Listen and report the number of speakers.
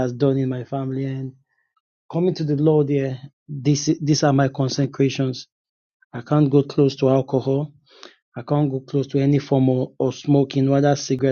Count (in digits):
1